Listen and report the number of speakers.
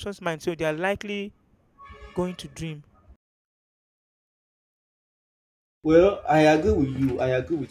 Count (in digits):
2